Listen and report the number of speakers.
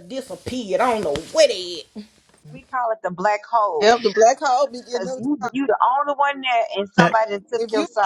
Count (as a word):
three